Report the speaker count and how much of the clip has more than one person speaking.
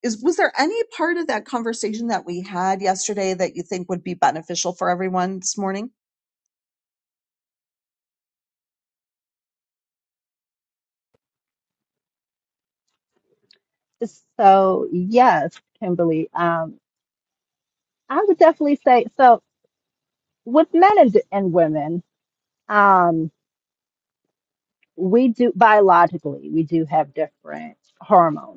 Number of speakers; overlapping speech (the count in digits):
2, no overlap